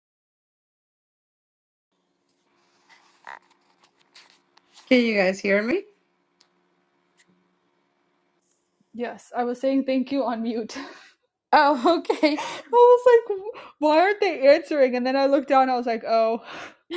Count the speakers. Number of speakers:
two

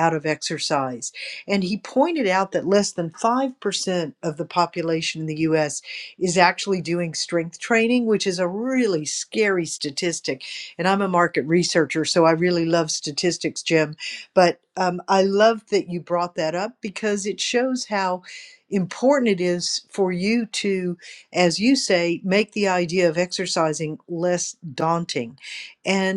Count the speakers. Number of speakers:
one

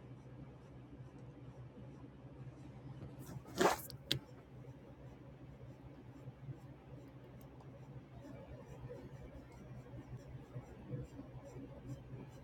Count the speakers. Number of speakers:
zero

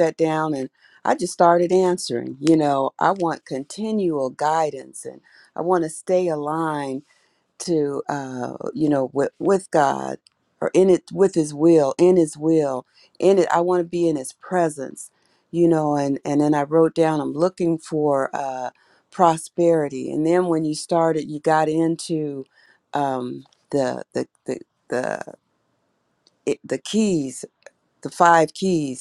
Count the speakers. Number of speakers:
one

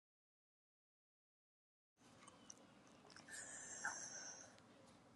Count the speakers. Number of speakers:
zero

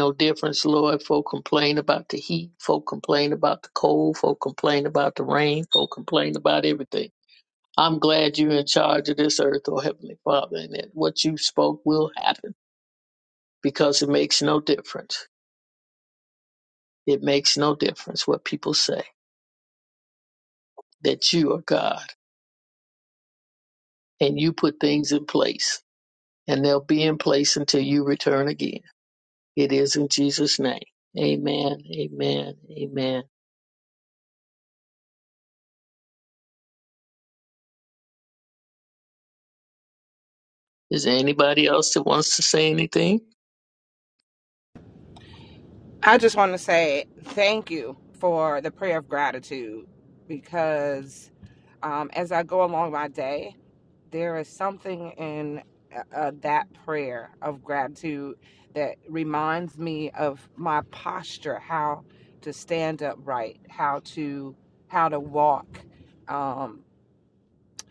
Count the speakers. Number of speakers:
two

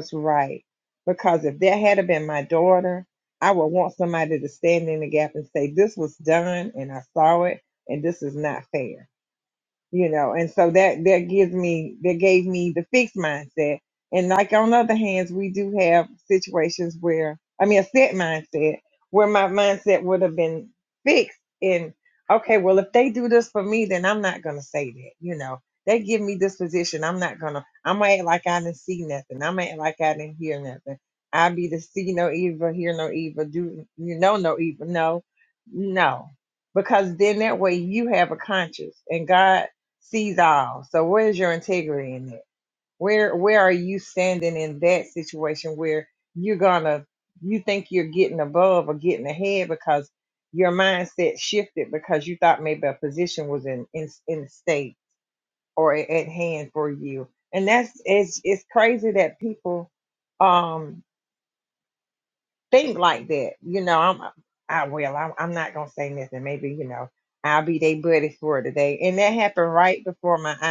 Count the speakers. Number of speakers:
one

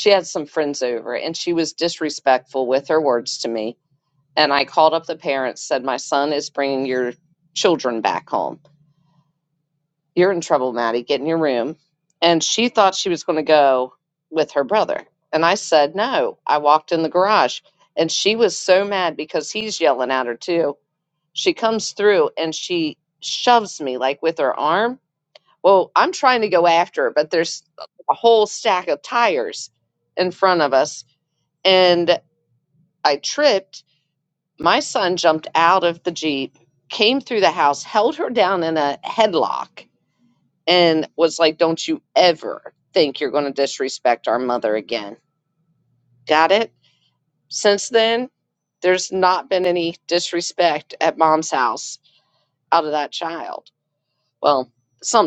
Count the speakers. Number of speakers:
one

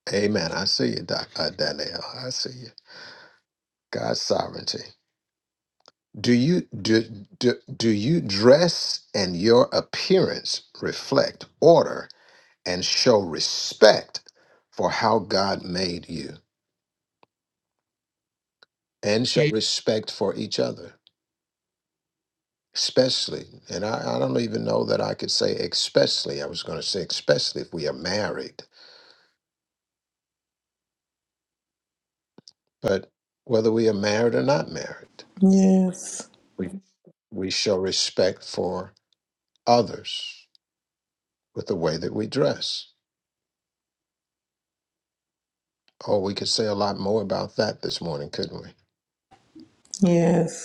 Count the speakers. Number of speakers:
two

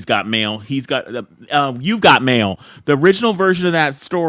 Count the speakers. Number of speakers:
one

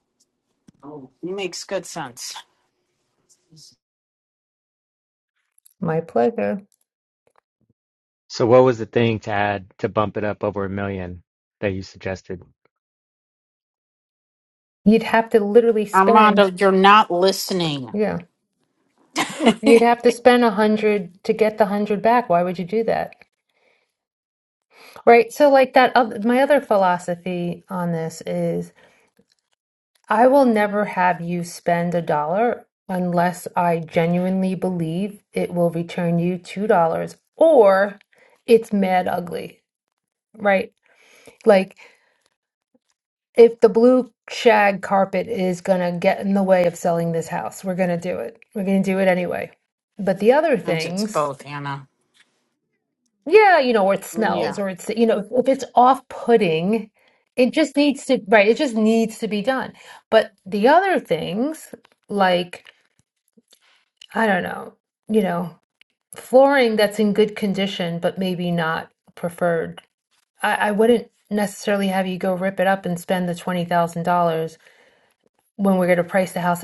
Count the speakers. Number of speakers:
three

